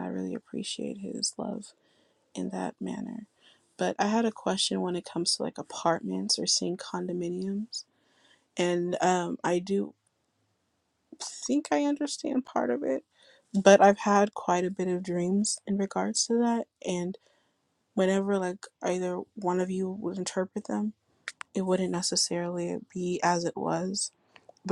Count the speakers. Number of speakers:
one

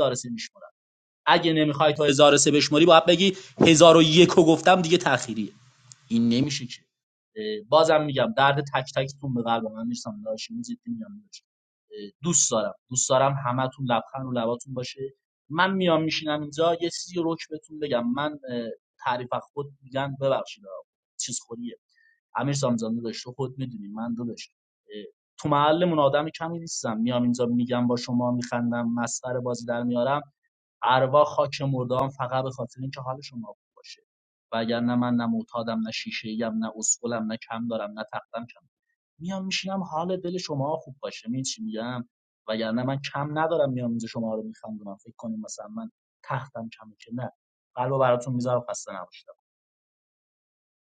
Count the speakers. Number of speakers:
one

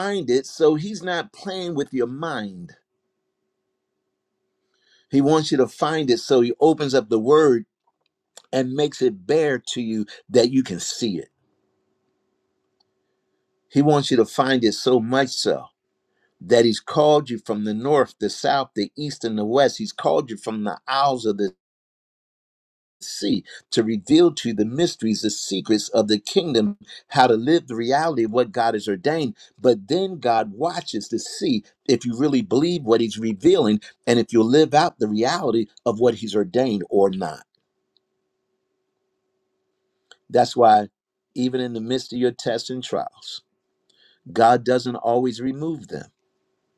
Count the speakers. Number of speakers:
one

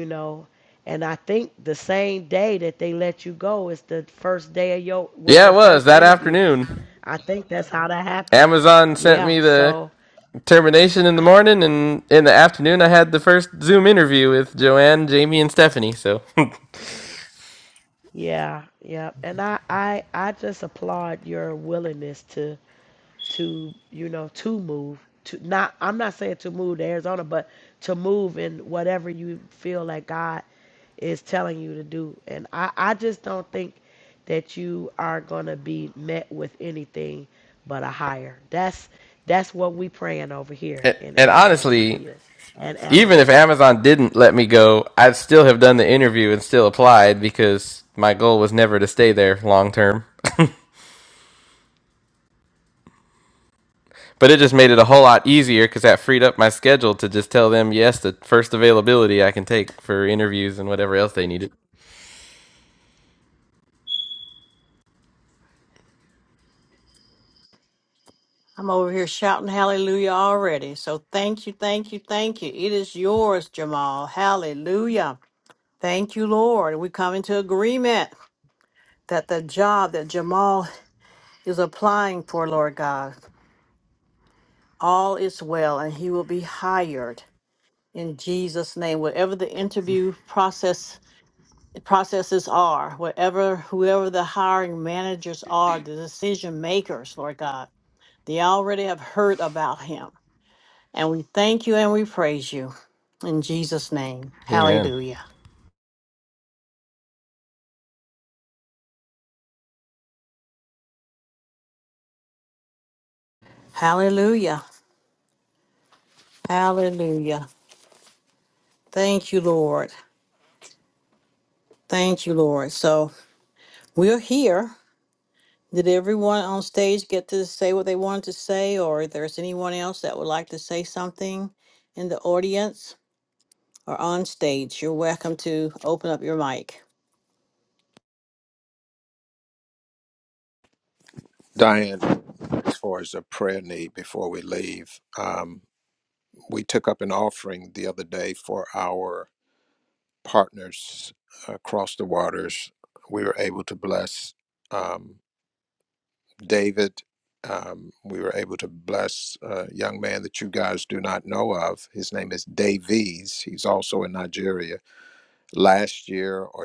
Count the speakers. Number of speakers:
four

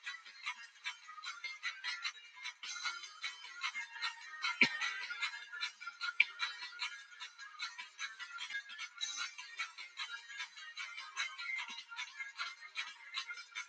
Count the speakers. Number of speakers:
zero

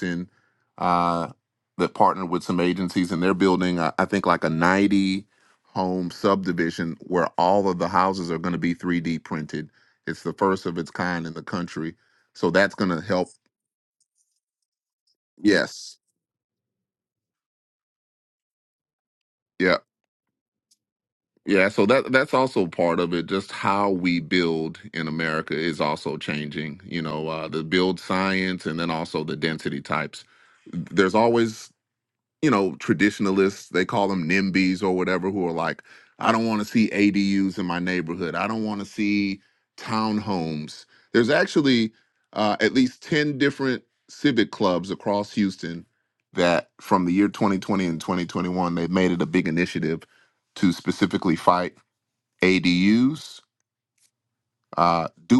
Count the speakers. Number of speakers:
one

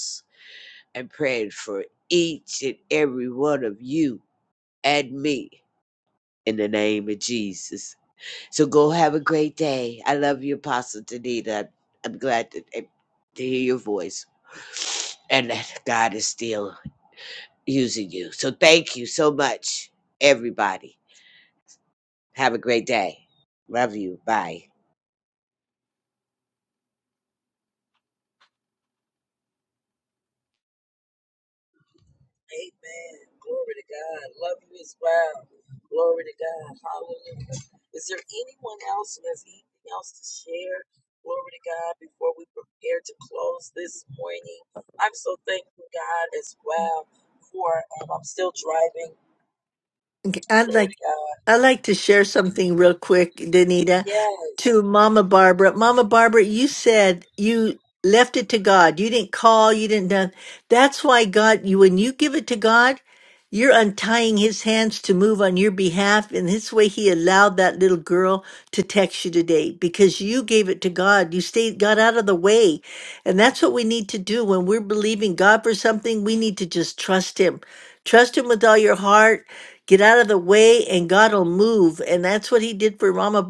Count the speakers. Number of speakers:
three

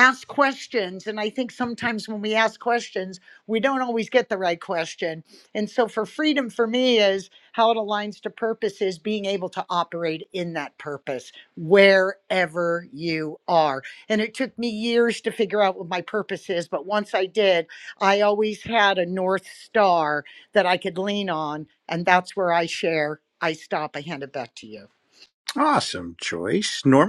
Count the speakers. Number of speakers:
two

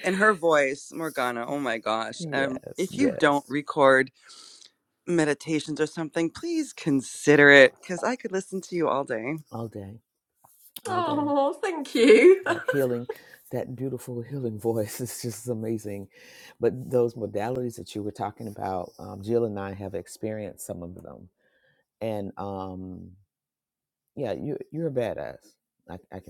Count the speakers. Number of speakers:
three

